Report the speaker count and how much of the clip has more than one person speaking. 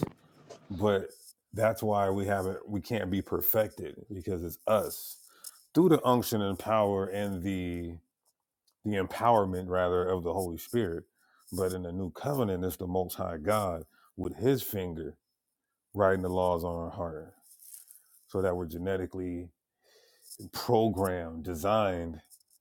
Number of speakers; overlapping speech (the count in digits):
1, no overlap